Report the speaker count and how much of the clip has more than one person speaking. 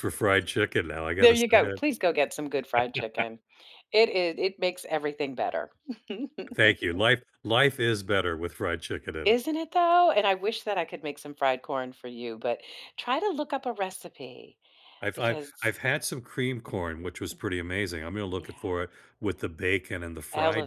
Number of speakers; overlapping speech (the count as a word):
two, about 8%